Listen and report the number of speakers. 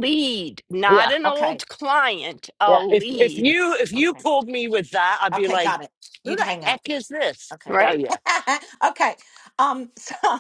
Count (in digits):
3